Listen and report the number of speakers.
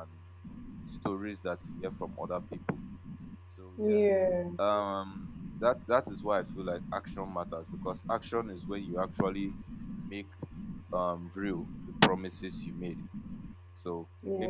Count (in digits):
2